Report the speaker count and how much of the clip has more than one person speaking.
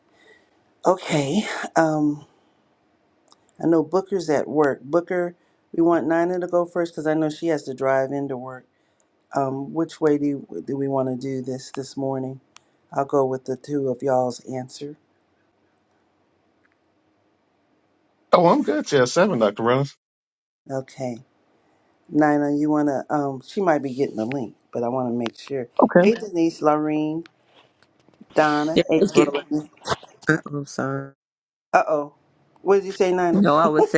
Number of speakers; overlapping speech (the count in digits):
3, about 3%